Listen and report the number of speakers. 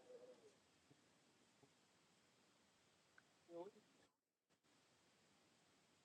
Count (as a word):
zero